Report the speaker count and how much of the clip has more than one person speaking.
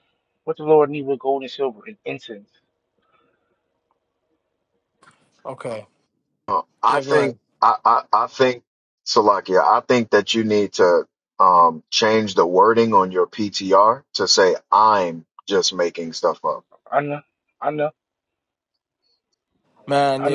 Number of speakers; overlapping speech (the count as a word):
three, about 3%